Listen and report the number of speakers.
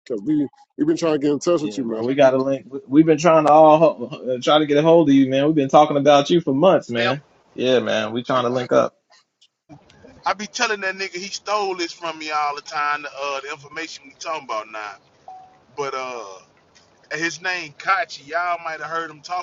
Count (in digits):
3